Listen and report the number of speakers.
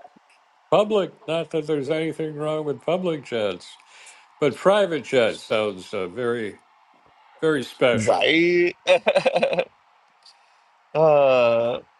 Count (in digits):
2